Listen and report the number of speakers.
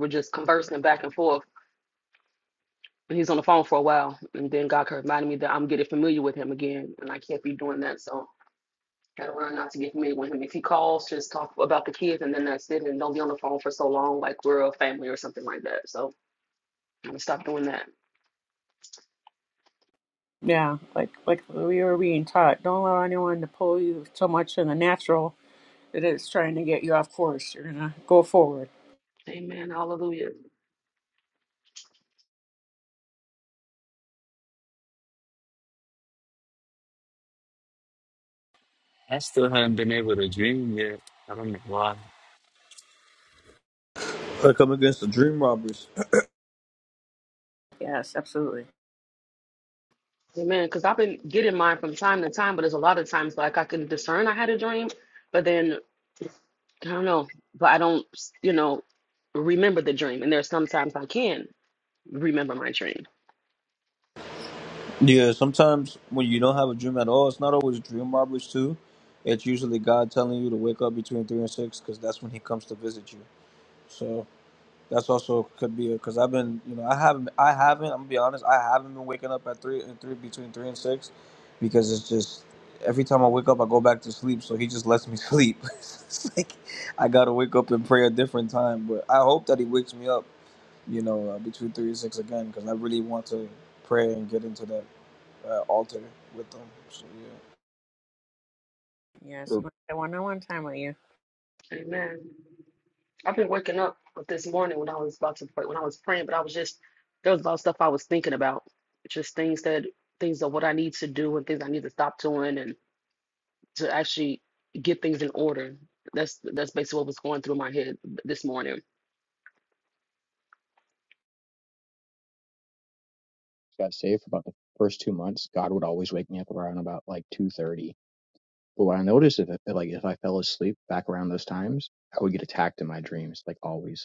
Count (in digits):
5